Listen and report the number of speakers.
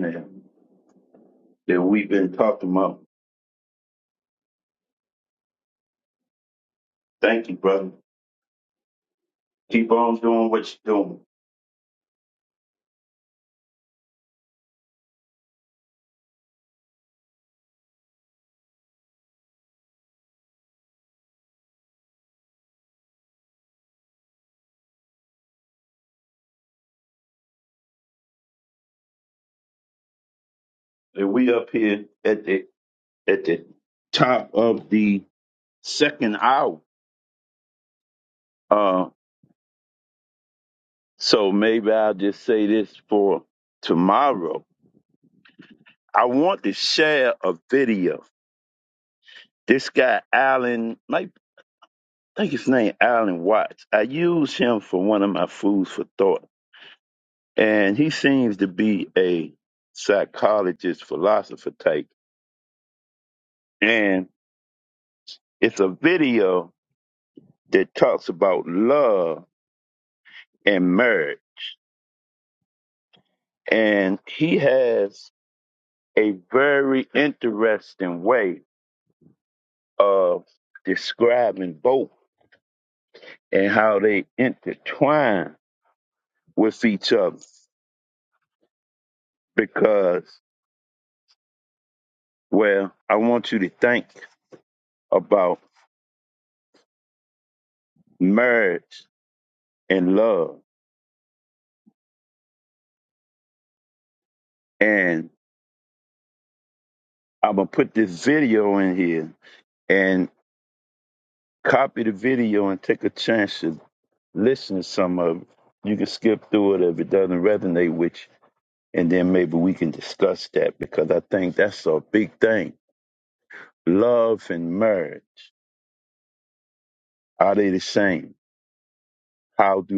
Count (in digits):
1